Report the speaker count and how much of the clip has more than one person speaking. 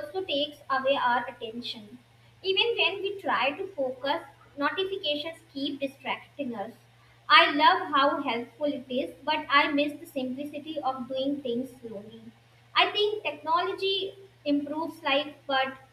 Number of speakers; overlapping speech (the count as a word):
one, no overlap